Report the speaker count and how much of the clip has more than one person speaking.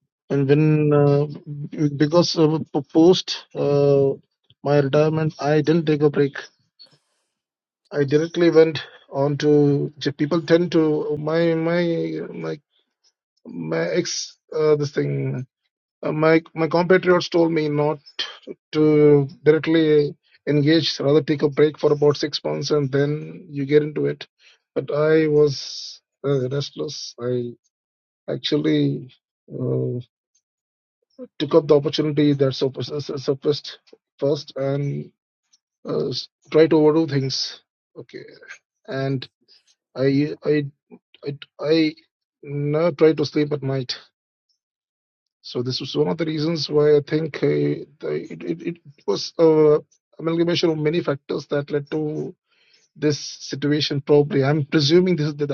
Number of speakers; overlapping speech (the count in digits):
1, no overlap